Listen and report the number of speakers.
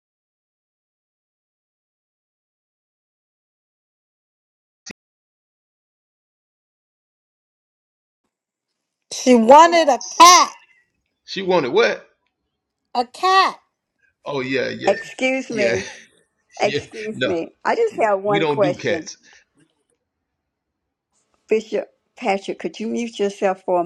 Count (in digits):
3